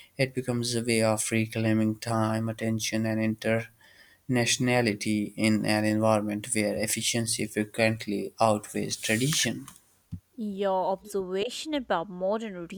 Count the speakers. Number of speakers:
two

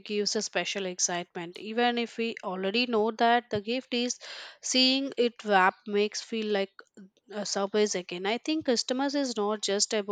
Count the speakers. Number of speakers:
one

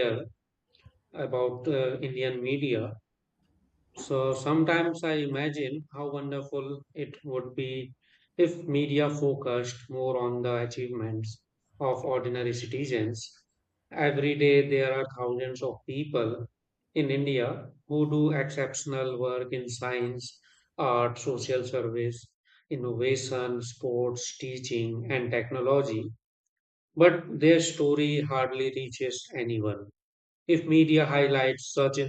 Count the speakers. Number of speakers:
one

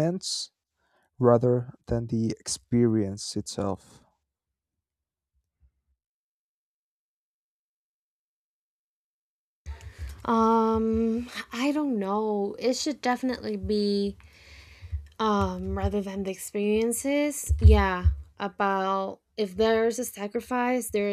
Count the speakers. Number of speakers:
two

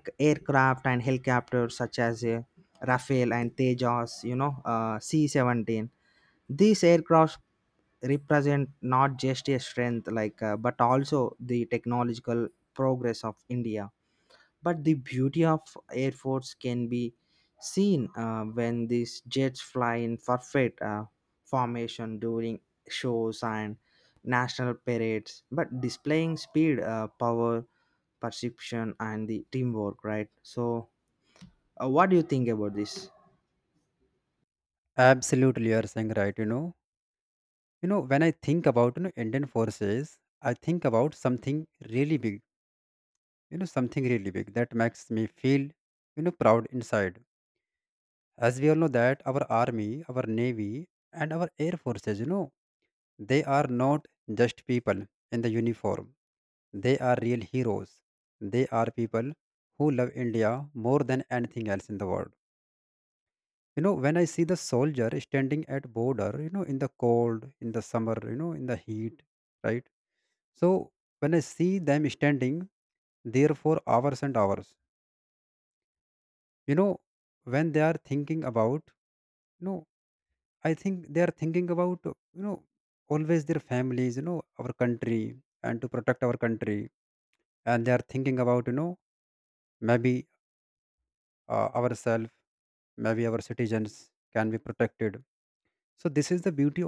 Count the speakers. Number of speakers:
two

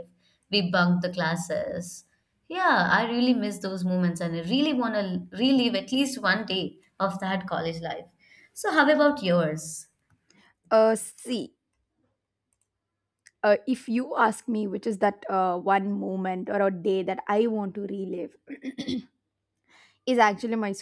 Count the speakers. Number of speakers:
two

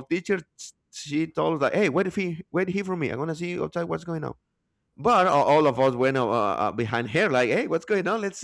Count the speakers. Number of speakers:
one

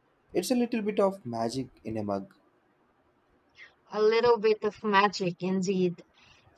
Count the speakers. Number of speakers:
two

